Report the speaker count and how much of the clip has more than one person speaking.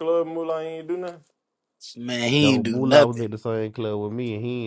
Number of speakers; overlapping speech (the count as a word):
three, about 18%